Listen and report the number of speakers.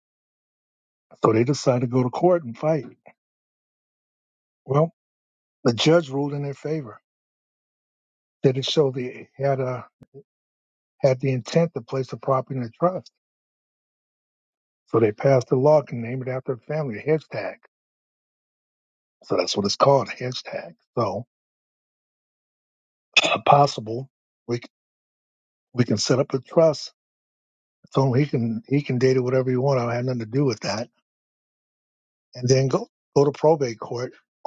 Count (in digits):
1